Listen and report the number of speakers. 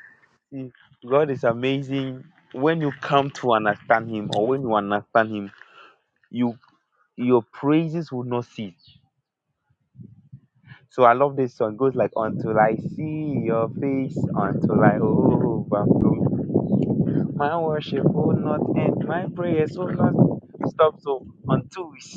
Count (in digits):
1